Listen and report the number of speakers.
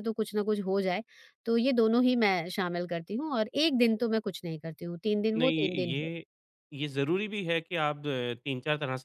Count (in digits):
2